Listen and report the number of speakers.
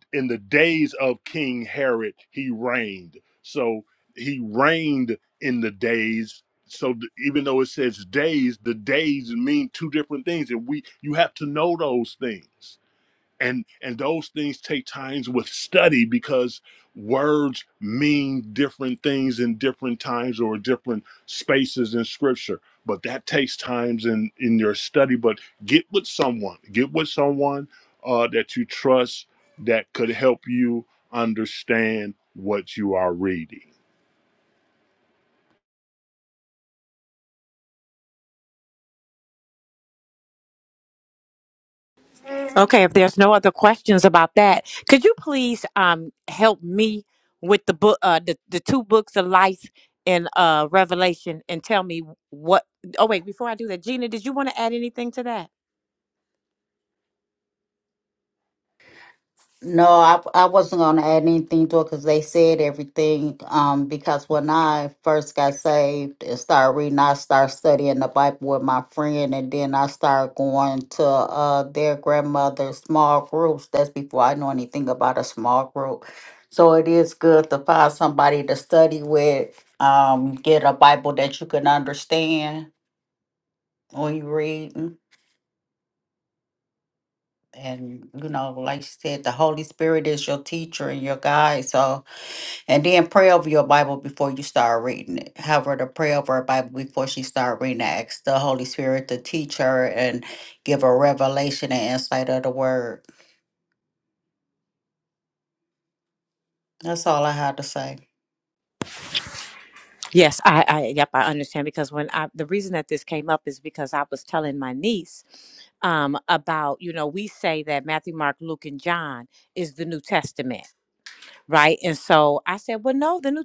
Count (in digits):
3